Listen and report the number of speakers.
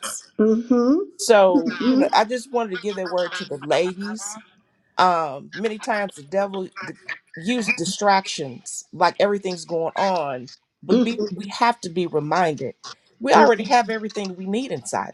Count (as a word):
two